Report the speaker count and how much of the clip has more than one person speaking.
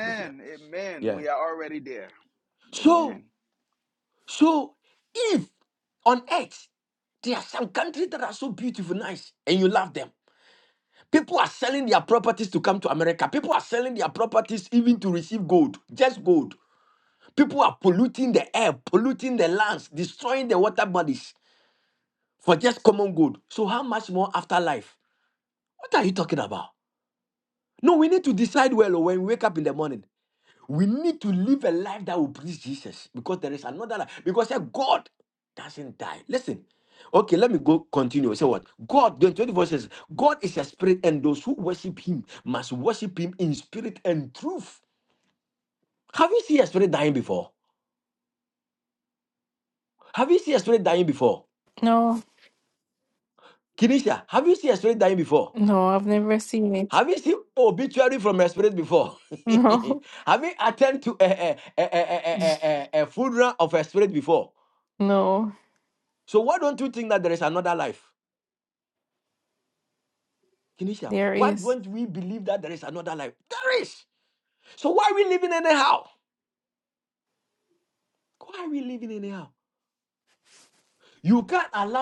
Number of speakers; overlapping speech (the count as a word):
three, about 2%